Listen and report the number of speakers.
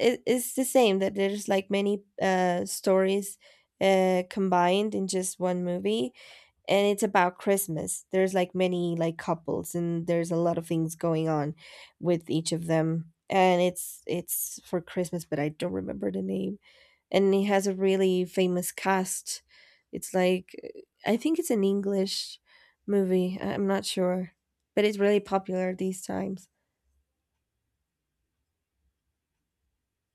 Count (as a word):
one